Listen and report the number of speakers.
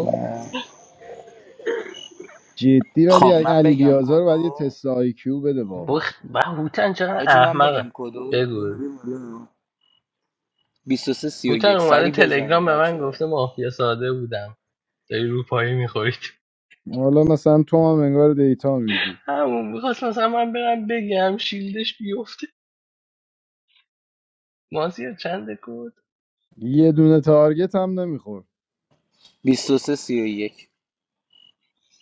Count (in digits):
3